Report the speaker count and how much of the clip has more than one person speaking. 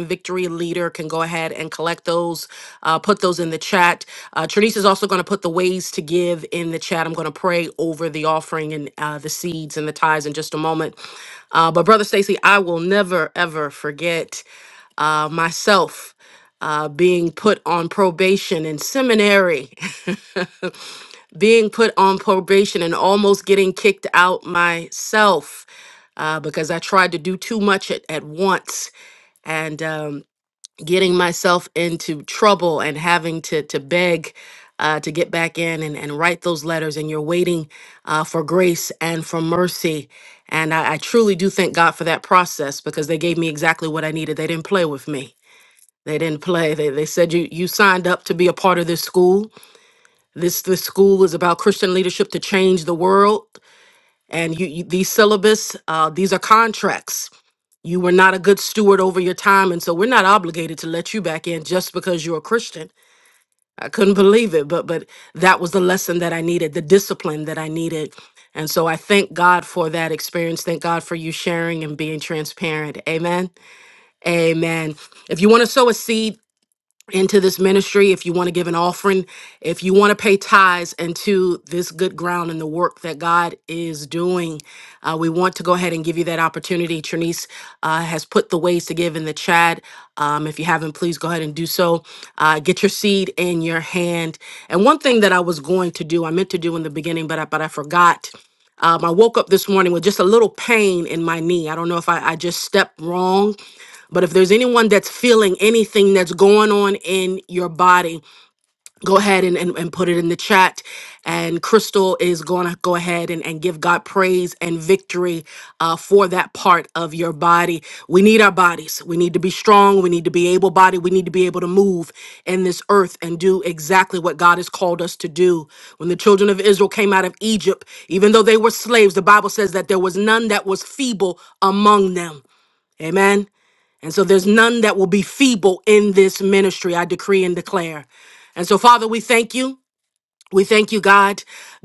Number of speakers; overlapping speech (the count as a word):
one, no overlap